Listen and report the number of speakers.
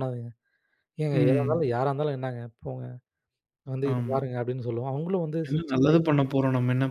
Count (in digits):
2